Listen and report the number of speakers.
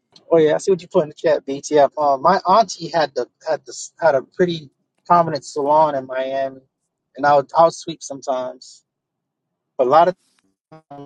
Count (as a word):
one